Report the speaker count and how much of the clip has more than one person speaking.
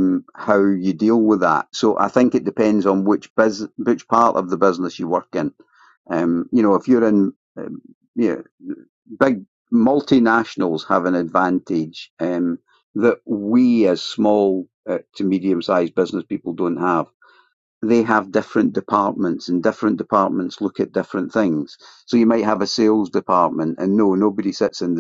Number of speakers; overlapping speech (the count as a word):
one, no overlap